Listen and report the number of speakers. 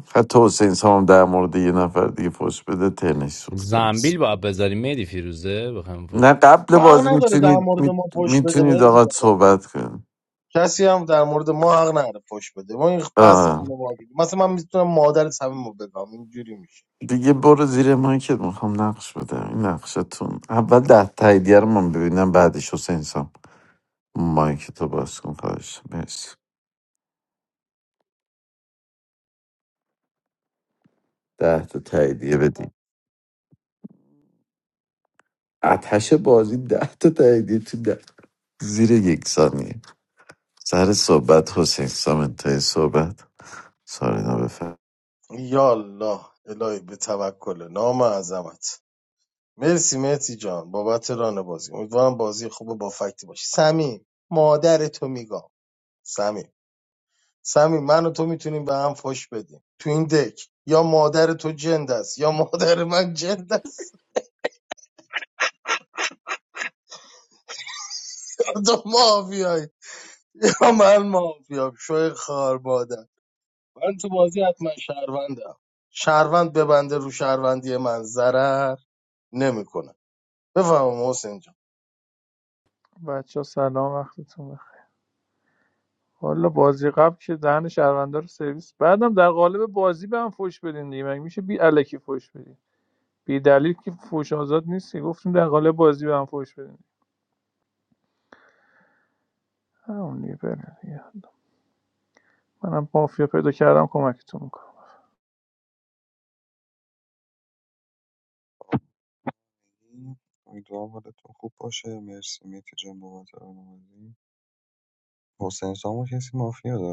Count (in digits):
5